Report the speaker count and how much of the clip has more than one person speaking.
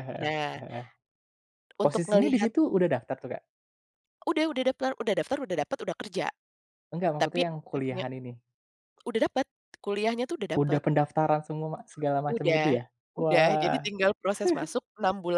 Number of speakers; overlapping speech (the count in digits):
2, about 18%